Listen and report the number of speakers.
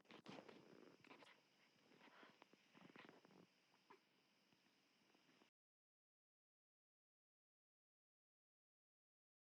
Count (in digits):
0